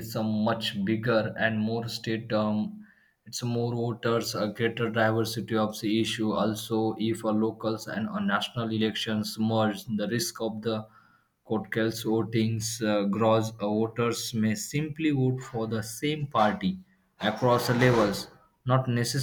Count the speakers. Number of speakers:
one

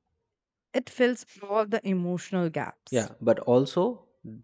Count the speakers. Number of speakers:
two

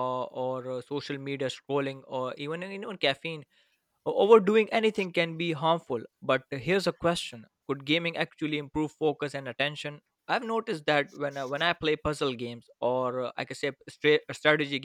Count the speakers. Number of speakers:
one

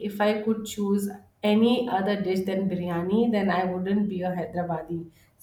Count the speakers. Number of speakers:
one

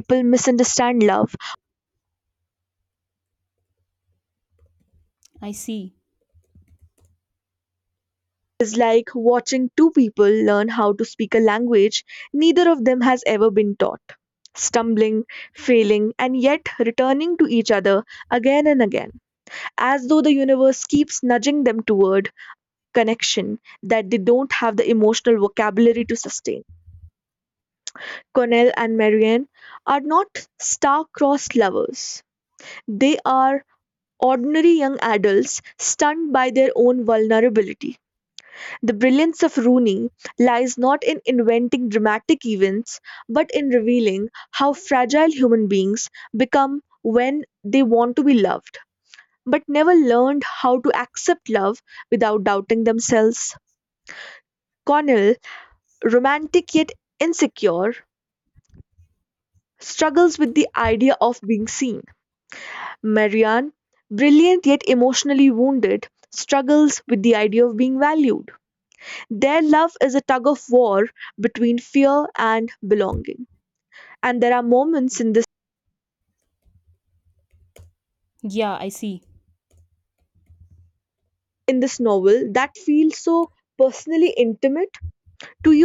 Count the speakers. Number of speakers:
two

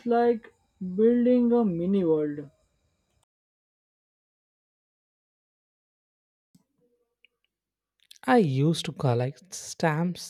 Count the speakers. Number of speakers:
two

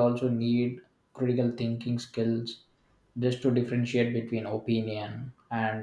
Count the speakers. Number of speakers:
one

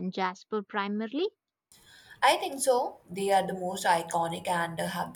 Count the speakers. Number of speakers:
two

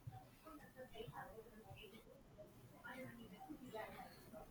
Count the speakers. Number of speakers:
zero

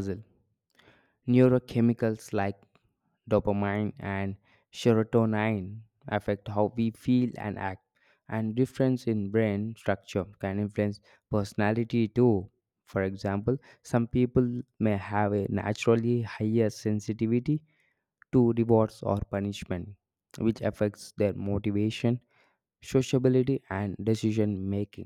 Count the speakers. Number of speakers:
one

